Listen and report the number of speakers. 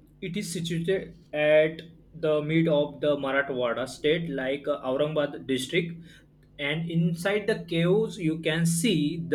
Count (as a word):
one